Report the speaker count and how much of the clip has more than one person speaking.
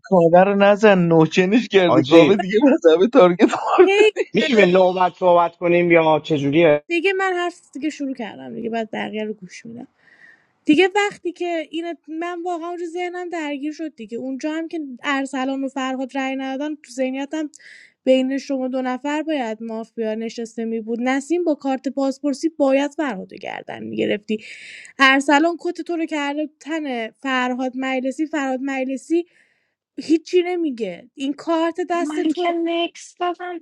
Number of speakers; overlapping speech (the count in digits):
4, about 4%